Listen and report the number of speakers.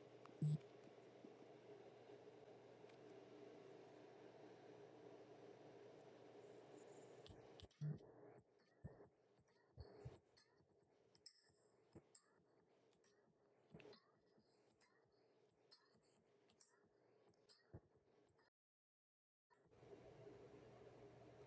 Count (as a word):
zero